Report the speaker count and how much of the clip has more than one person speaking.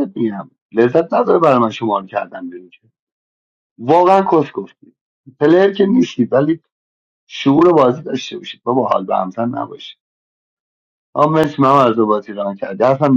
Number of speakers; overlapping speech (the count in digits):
1, no overlap